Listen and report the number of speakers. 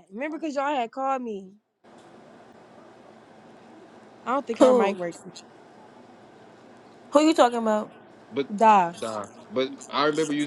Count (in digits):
3